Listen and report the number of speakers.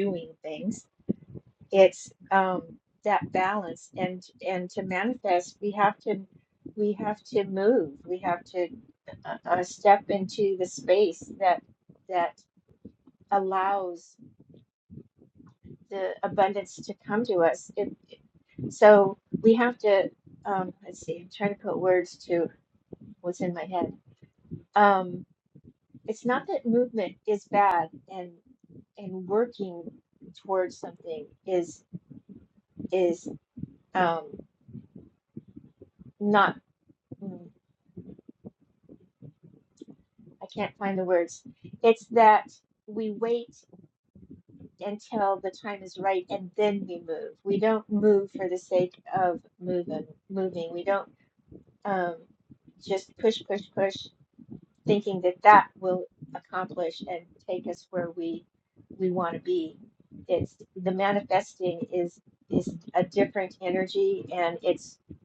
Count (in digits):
1